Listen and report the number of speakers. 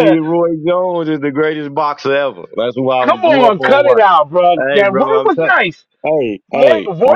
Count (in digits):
2